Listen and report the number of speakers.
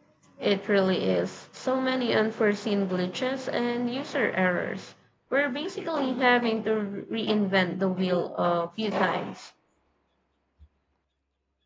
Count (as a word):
one